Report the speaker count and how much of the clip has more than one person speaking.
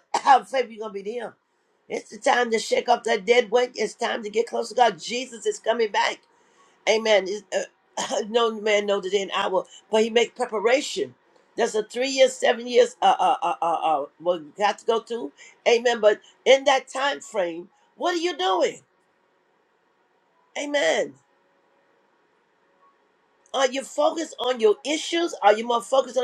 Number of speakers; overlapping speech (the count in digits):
1, no overlap